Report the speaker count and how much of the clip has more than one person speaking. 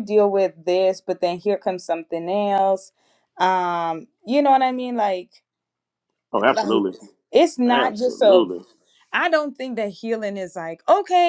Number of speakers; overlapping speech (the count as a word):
two, about 10%